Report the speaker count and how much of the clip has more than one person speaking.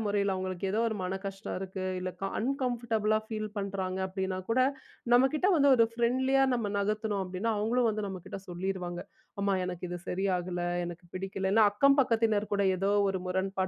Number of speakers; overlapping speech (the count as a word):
one, no overlap